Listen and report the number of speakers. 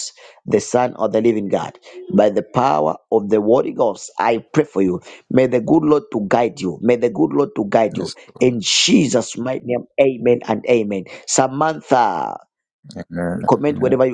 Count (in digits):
2